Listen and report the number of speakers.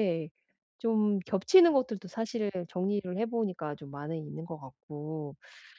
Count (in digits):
1